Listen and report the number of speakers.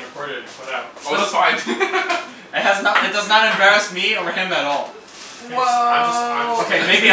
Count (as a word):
three